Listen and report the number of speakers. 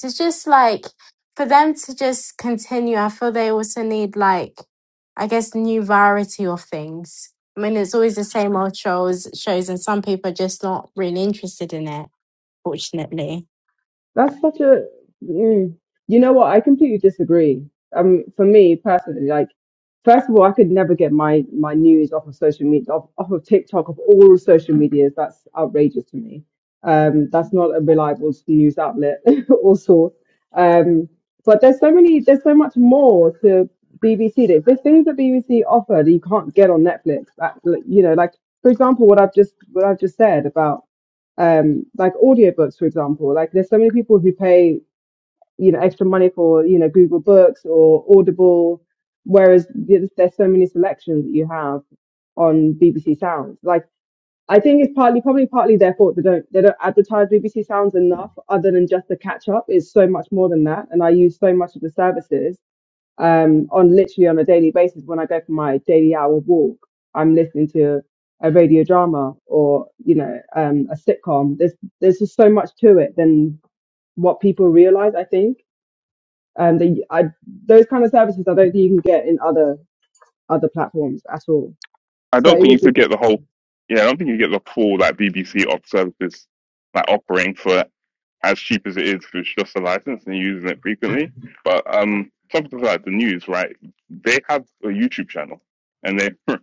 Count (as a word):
three